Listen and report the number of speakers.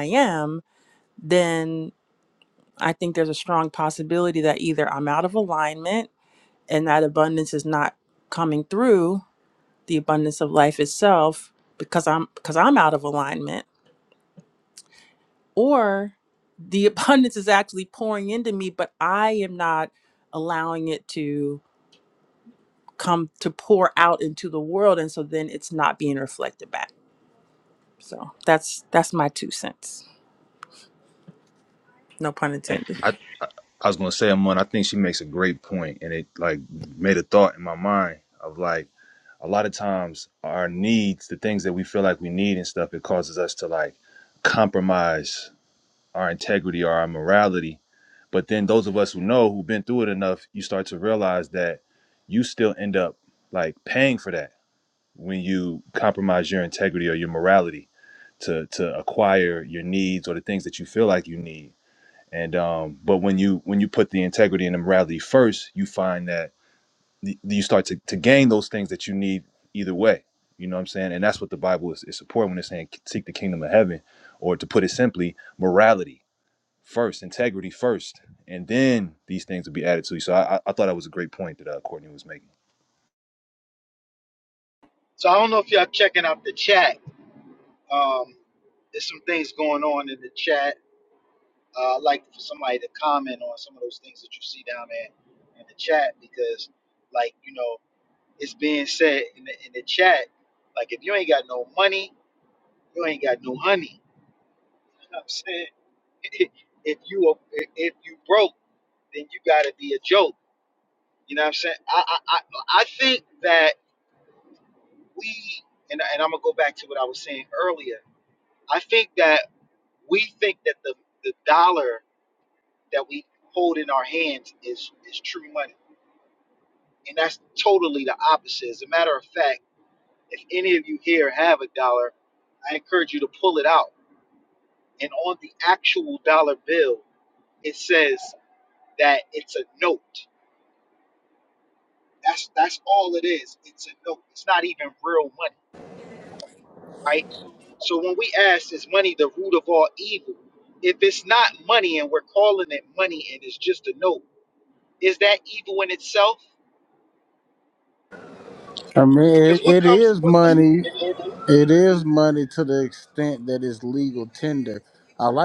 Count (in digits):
4